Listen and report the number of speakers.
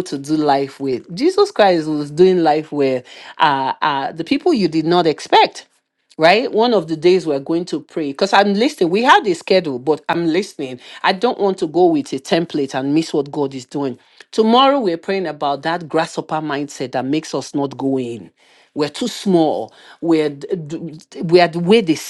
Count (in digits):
1